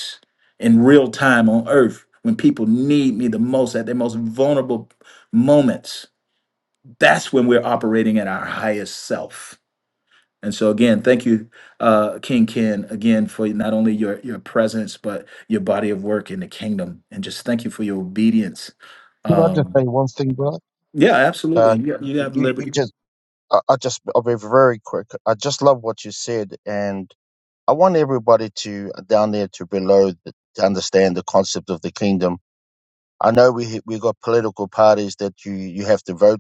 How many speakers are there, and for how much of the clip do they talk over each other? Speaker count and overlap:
2, about 3%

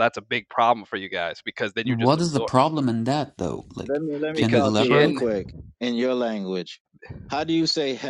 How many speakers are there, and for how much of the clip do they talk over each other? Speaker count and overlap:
3, about 21%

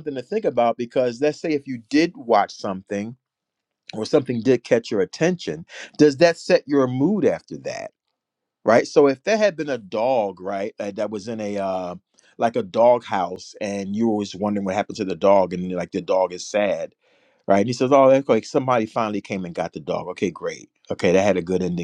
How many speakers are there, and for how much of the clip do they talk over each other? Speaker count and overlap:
1, no overlap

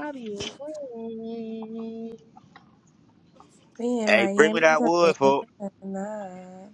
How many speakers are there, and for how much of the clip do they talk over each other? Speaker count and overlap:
3, about 12%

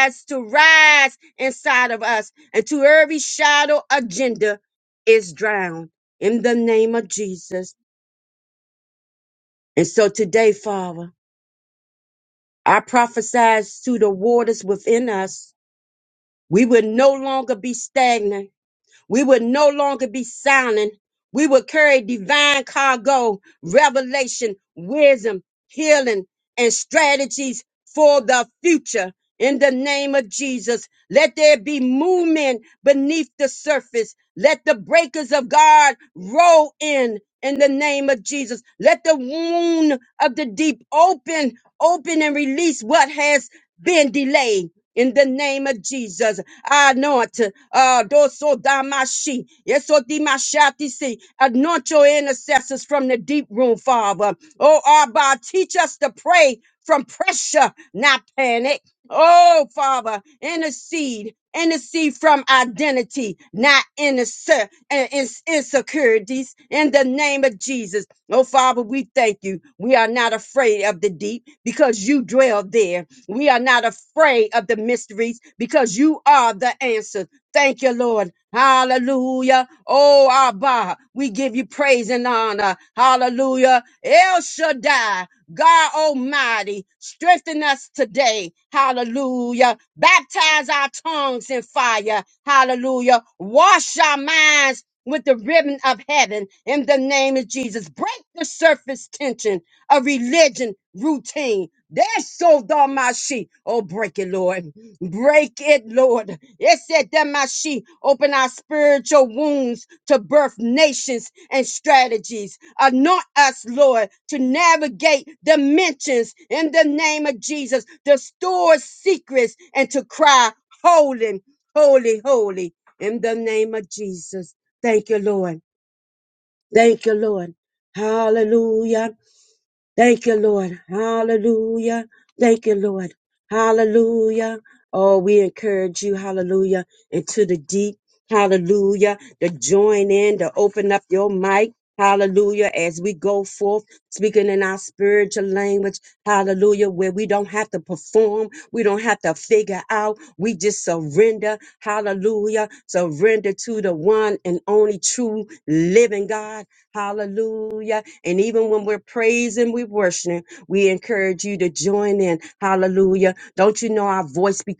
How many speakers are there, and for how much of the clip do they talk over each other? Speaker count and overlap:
1, no overlap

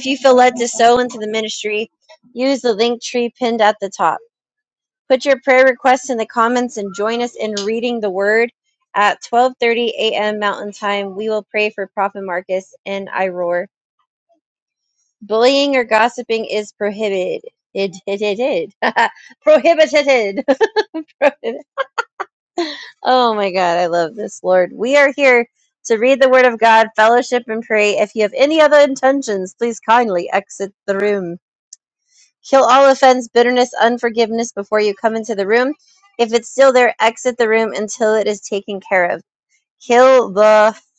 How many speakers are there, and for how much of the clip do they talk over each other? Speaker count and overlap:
1, no overlap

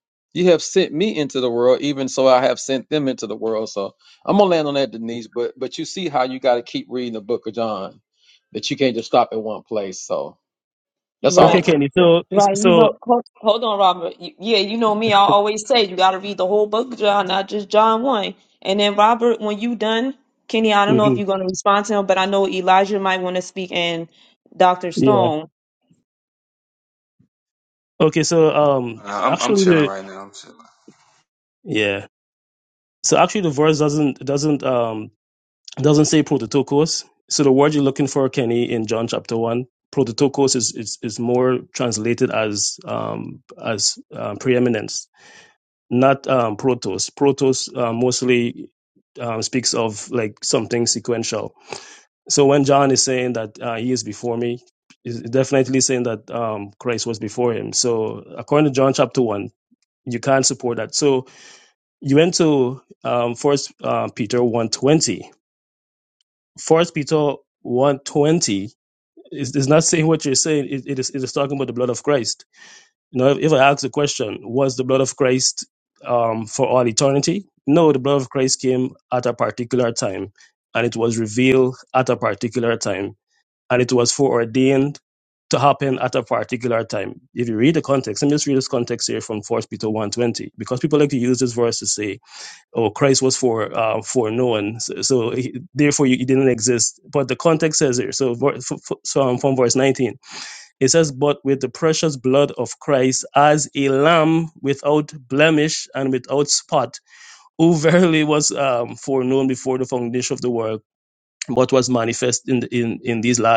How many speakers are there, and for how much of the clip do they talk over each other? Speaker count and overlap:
4, about 2%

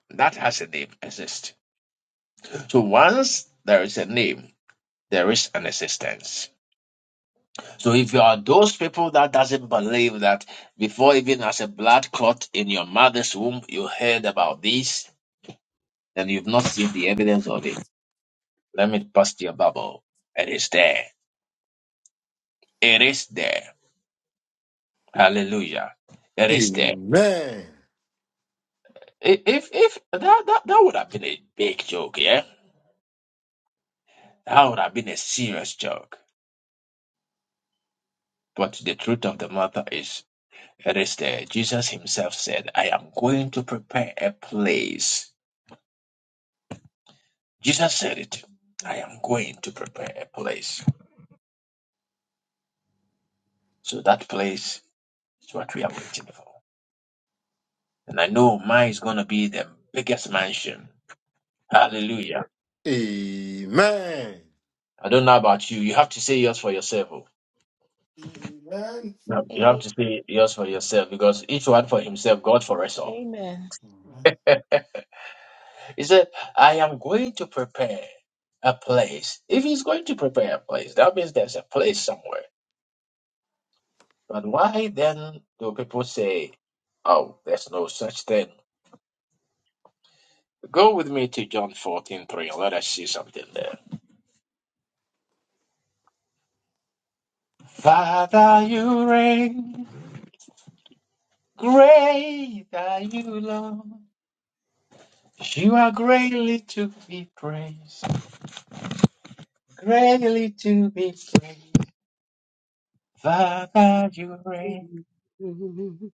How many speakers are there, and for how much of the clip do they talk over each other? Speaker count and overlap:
4, about 1%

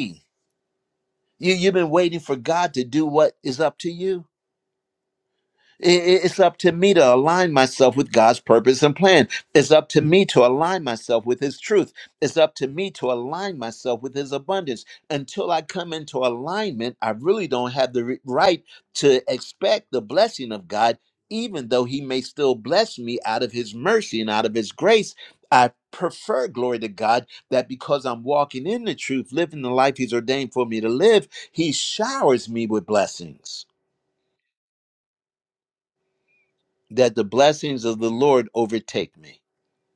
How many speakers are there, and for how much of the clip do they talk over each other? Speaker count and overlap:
1, no overlap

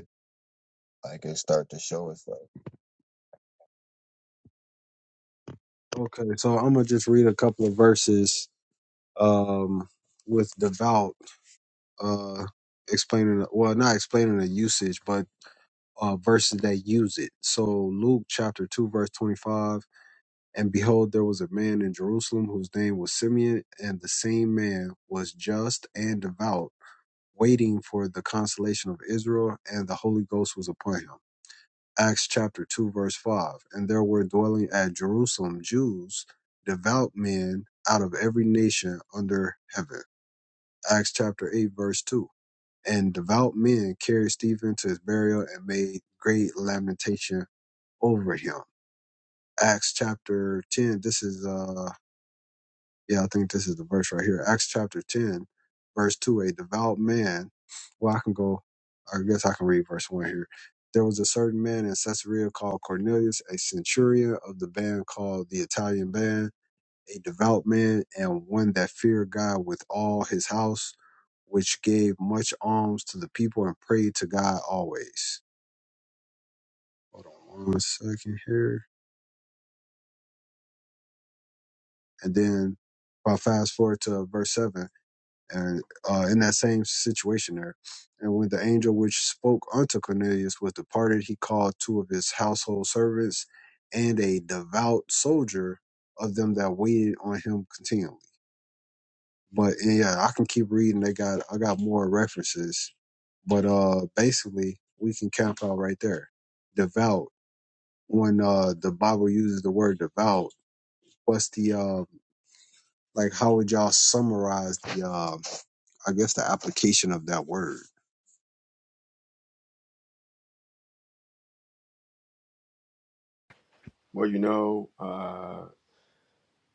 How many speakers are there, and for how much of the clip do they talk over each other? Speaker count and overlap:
3, no overlap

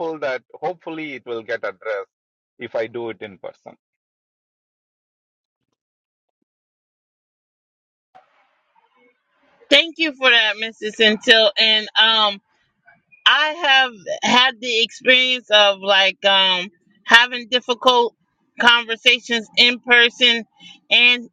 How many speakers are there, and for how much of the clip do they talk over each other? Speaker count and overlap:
2, no overlap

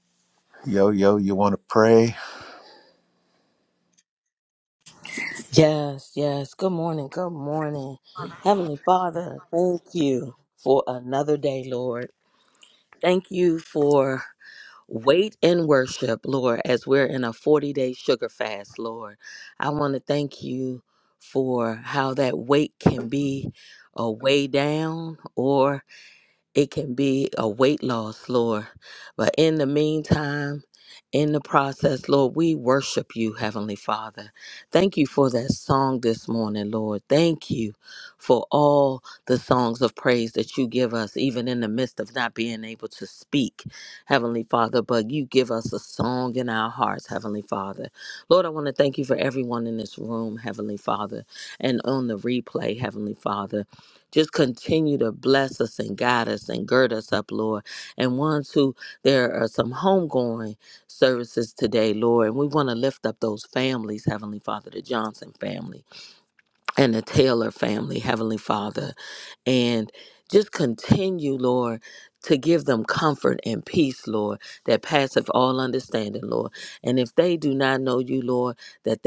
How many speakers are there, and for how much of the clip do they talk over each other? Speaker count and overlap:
2, no overlap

